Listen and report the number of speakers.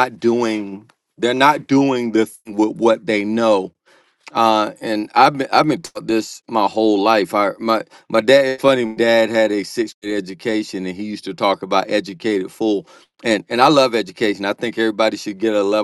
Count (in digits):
1